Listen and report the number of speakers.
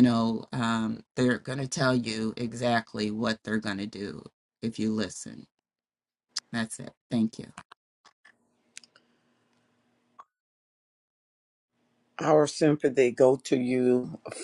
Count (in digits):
2